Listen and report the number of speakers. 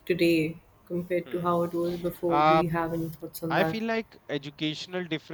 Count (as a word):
two